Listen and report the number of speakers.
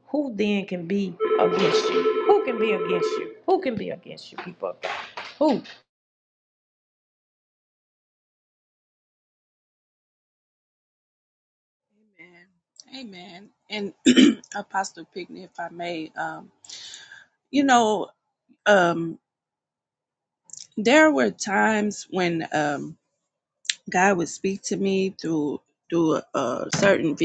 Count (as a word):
two